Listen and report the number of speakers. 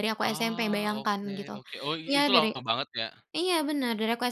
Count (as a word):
two